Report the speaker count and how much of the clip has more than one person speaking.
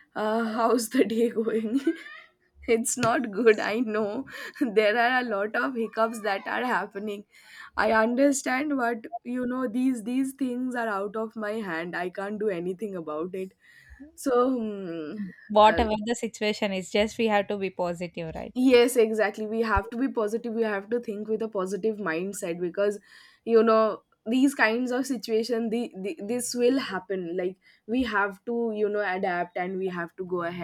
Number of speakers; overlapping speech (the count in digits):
2, about 1%